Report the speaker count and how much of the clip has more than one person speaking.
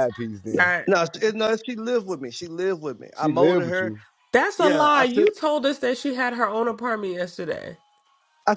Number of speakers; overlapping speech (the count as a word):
three, about 17%